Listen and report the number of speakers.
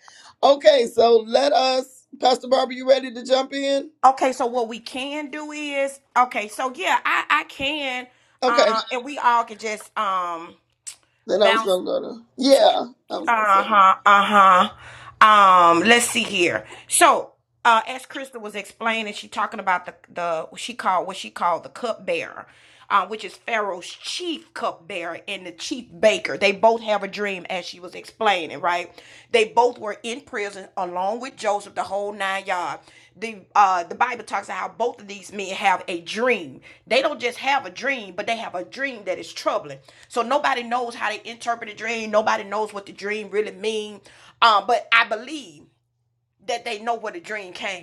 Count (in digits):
2